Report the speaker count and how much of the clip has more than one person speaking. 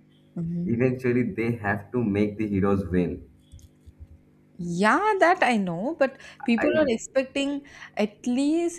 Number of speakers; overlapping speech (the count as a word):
two, about 3%